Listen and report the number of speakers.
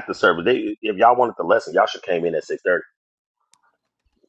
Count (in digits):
1